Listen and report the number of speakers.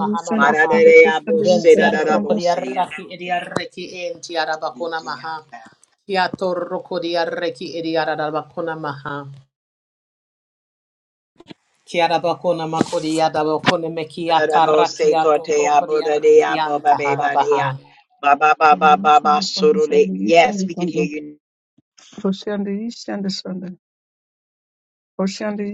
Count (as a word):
three